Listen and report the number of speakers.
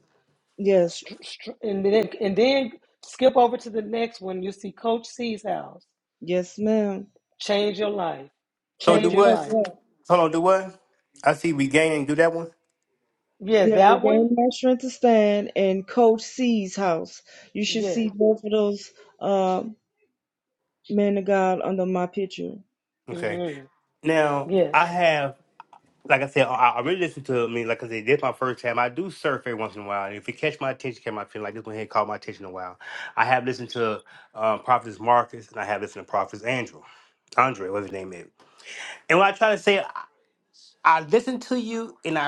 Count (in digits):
3